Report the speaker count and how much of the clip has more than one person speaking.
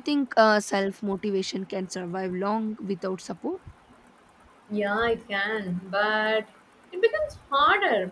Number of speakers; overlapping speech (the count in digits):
2, no overlap